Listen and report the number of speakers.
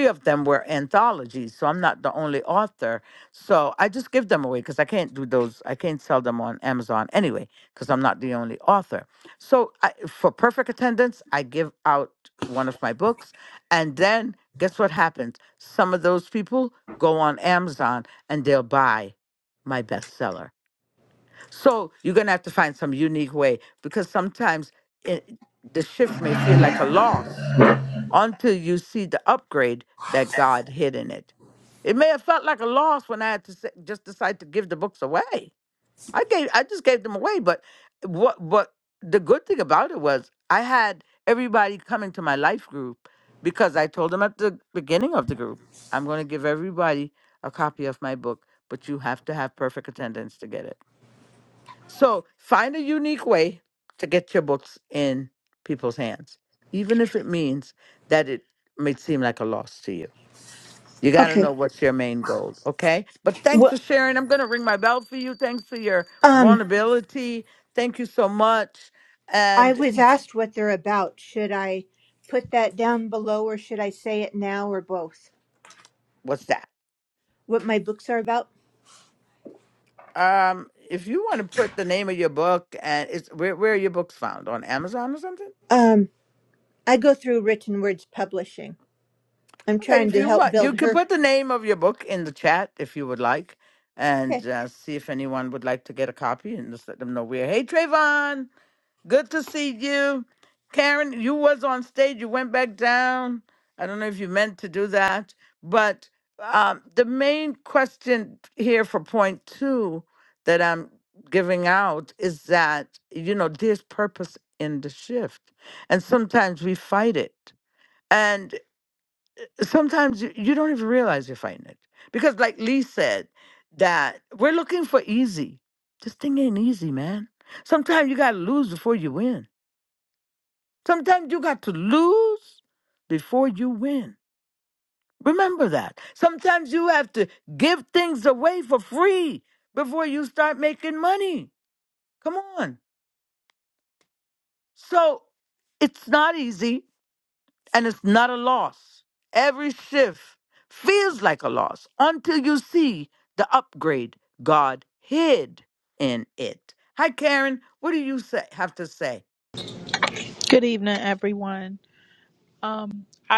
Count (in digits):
3